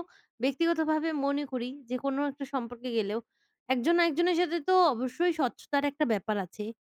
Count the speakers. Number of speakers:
one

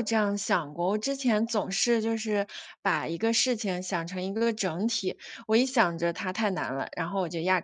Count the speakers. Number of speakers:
one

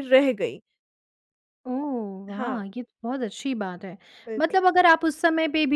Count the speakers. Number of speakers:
two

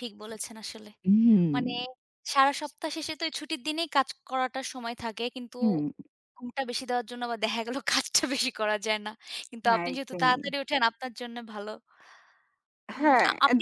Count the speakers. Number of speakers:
two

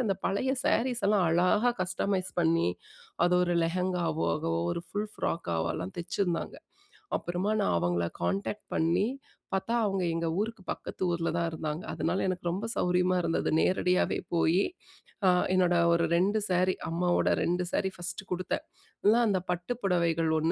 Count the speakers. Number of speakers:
one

